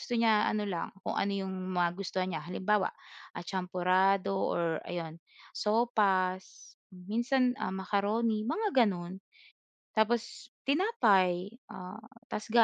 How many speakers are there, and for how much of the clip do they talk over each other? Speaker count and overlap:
1, no overlap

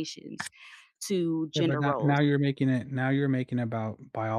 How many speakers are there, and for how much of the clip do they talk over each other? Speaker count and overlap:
2, about 14%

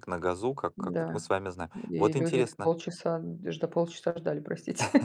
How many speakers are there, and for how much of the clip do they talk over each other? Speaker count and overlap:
2, about 25%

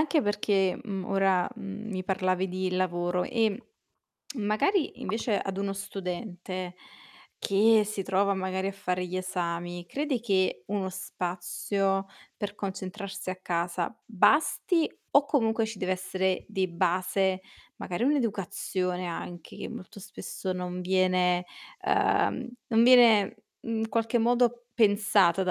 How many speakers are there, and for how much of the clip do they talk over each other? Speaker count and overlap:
1, no overlap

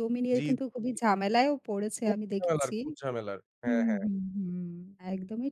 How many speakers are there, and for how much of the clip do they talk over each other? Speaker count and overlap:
2, about 24%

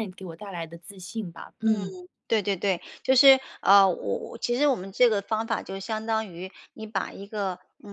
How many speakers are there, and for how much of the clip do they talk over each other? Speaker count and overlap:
2, about 2%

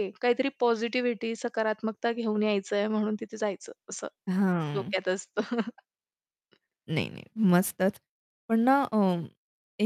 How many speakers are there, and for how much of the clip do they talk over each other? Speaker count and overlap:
2, about 2%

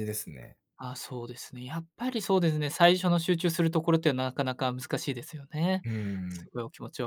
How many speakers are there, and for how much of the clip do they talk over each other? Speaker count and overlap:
2, no overlap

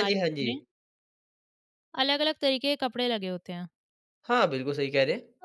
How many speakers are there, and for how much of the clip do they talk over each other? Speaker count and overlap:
2, about 11%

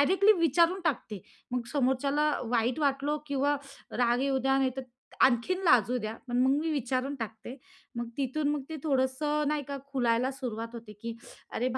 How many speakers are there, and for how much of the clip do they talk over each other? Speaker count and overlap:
1, no overlap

